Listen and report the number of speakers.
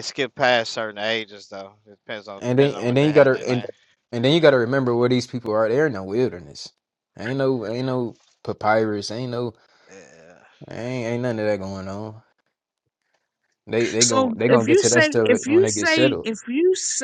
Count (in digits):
3